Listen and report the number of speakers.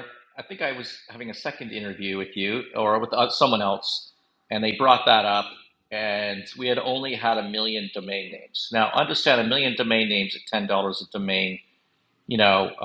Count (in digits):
1